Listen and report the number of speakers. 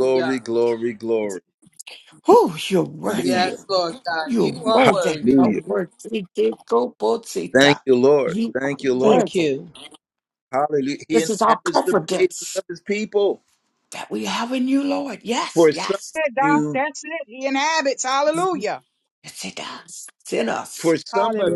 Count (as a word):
four